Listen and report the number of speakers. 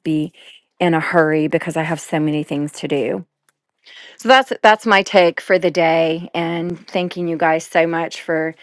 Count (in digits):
1